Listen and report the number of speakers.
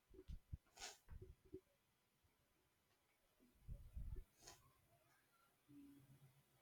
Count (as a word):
zero